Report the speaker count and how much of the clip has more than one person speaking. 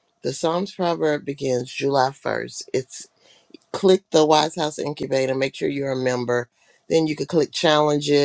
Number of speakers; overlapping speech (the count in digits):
1, no overlap